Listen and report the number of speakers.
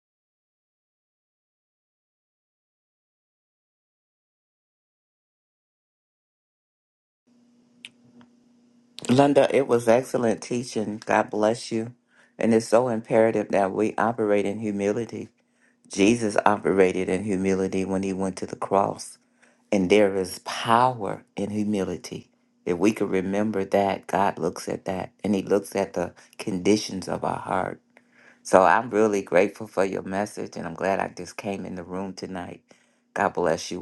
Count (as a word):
one